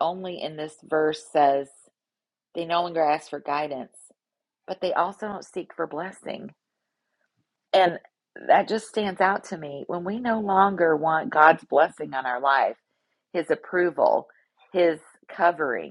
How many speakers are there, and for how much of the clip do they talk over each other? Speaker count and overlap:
1, no overlap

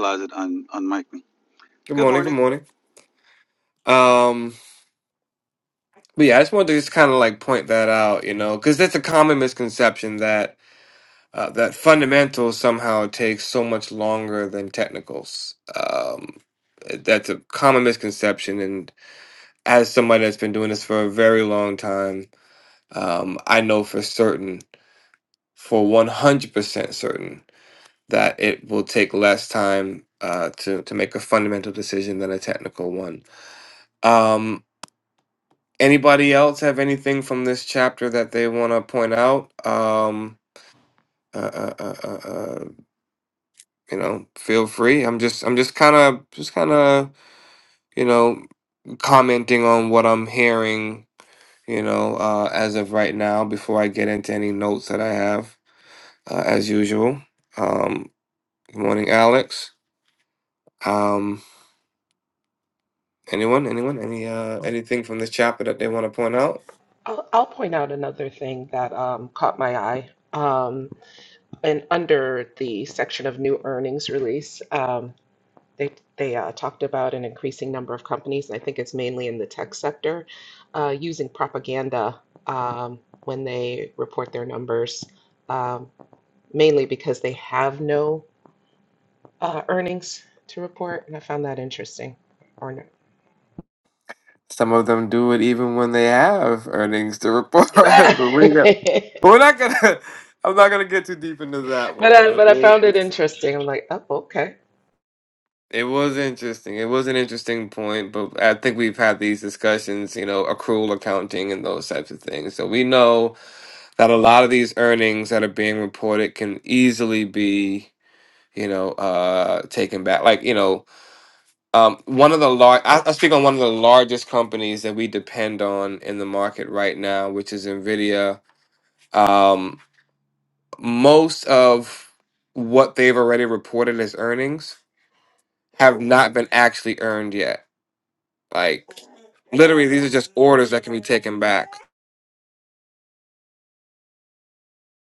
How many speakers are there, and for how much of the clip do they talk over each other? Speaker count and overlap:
3, about 1%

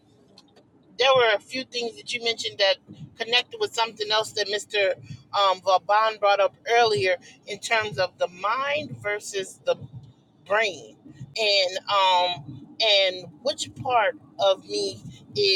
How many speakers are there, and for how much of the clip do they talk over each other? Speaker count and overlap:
1, no overlap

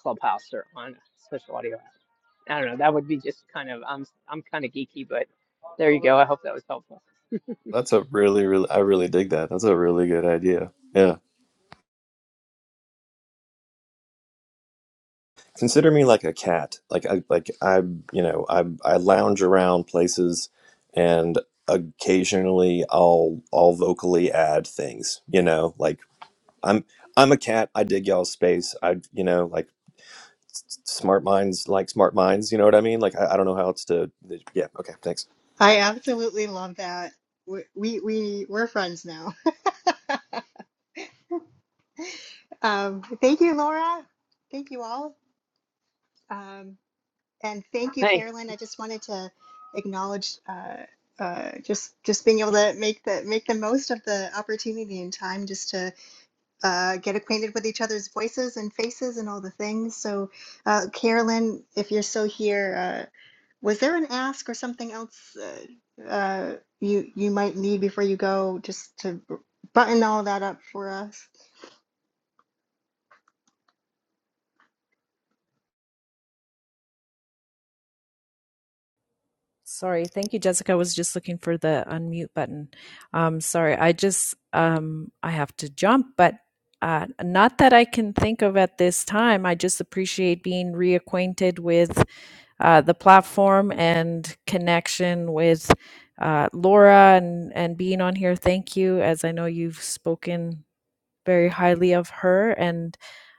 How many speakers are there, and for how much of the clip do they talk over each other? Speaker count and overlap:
4, under 1%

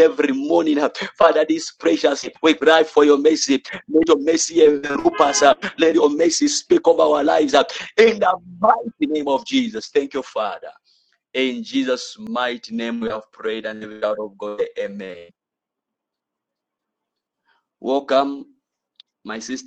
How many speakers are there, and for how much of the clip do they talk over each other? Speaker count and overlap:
1, no overlap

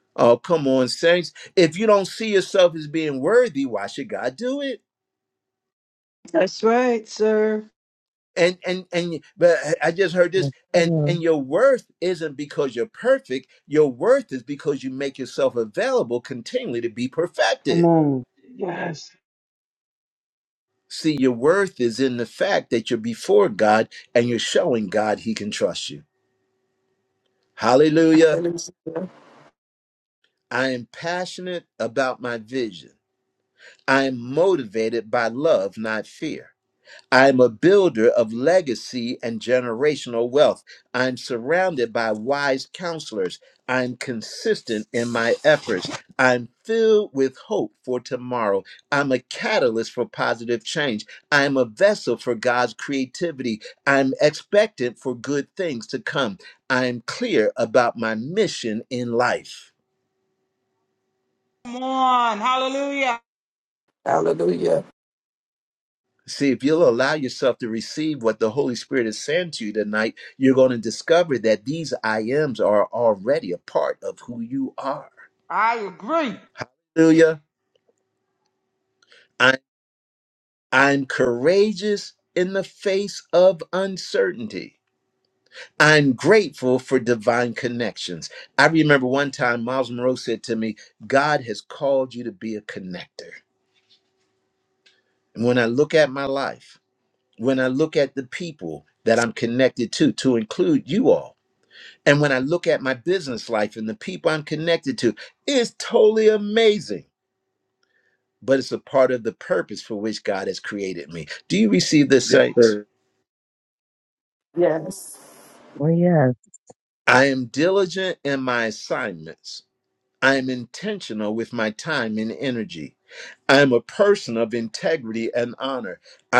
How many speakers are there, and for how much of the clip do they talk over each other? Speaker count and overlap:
6, about 1%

